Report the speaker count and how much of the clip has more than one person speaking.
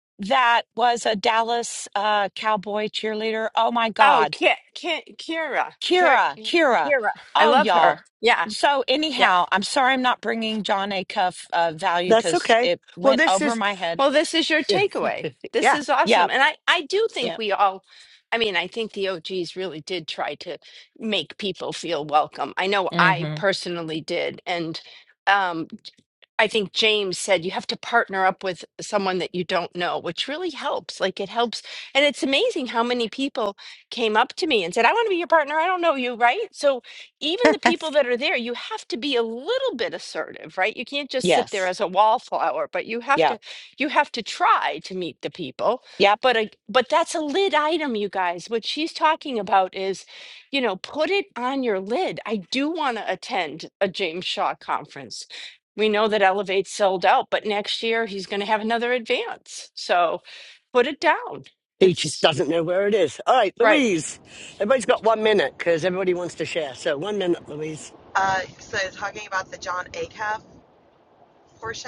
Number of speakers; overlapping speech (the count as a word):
four, about 7%